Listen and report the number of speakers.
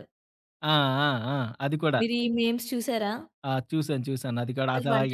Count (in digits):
2